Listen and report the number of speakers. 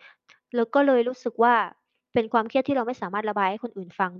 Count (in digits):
1